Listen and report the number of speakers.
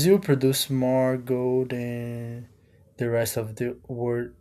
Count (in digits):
1